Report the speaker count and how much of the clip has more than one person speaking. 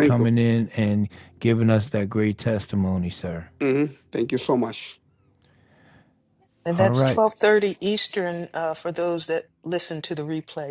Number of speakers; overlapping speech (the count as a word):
three, about 7%